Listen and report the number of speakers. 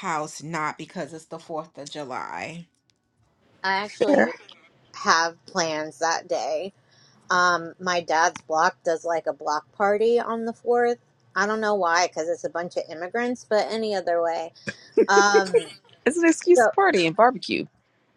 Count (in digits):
3